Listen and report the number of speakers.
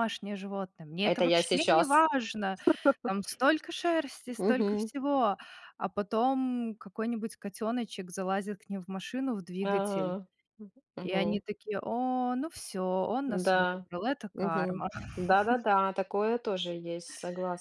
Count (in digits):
2